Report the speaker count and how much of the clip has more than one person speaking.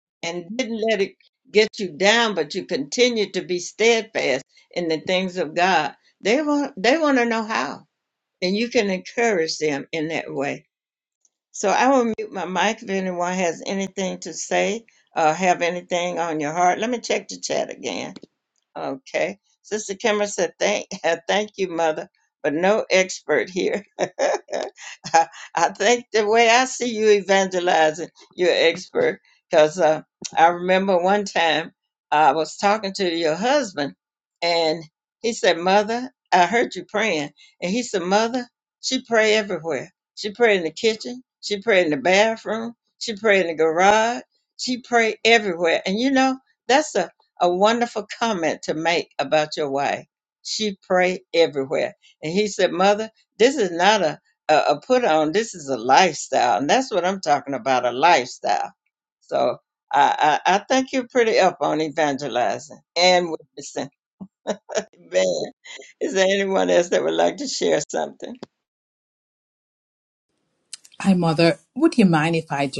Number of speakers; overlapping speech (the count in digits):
2, no overlap